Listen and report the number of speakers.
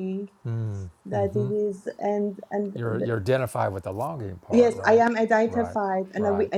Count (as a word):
two